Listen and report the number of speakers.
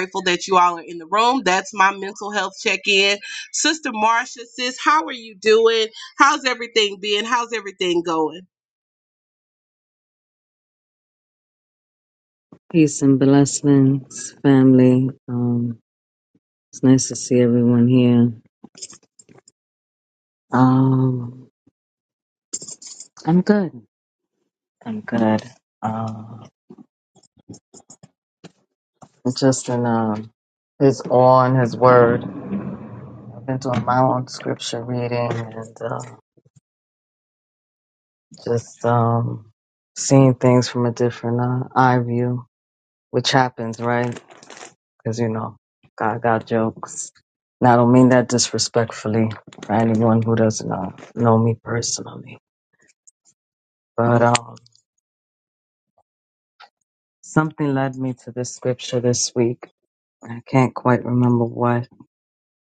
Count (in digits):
2